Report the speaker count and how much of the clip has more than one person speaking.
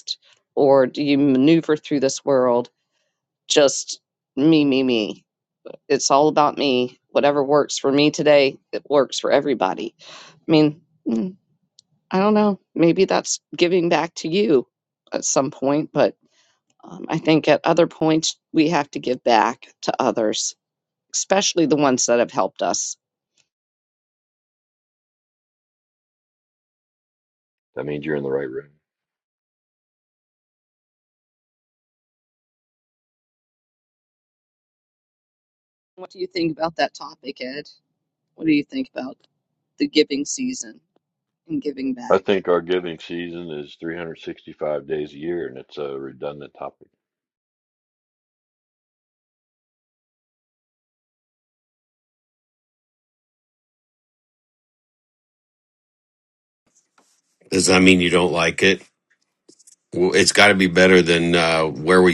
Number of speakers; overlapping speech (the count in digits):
3, under 1%